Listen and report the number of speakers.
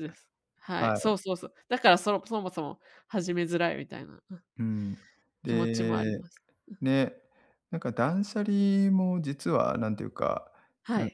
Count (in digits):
2